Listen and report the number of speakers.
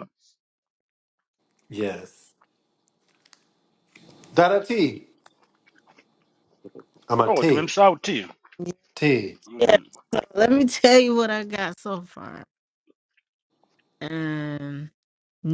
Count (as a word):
three